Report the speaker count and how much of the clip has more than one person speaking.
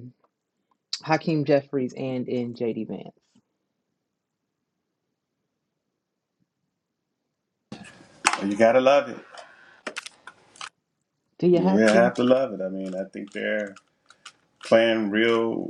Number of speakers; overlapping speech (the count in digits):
2, about 4%